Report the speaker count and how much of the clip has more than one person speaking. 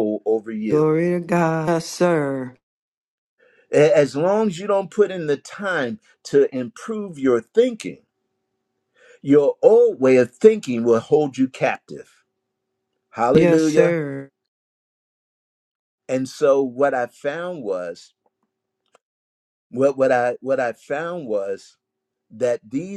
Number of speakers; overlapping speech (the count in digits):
2, about 3%